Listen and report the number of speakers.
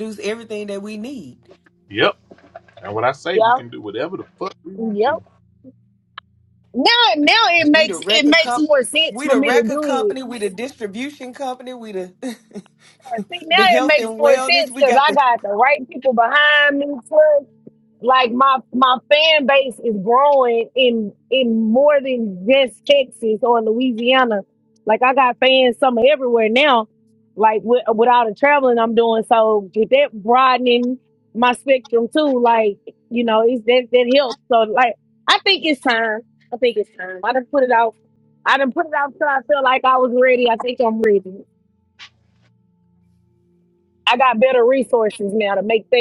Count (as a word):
three